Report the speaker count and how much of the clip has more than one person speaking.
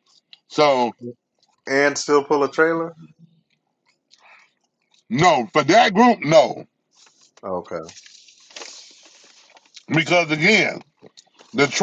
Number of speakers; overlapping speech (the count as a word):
two, no overlap